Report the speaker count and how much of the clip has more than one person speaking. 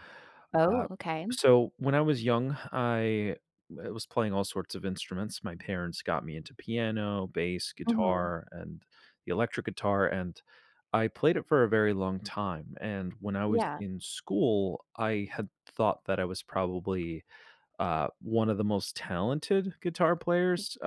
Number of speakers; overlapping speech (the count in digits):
2, about 5%